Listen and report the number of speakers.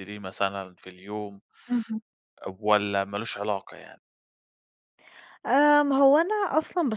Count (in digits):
2